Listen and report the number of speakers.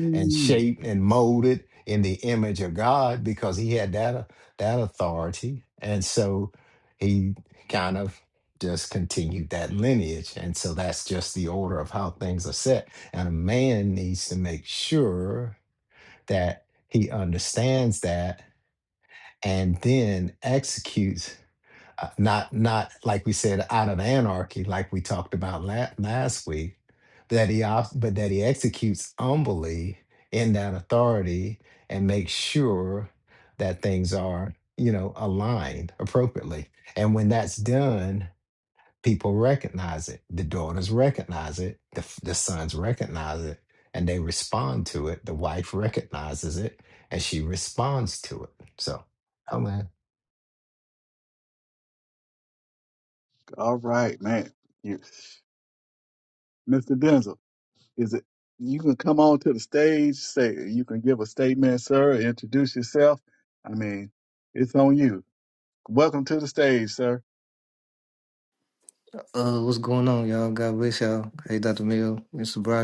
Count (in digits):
3